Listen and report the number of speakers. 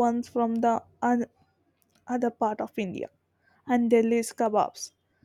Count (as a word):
one